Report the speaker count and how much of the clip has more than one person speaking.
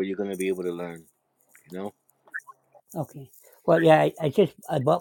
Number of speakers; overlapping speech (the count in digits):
2, no overlap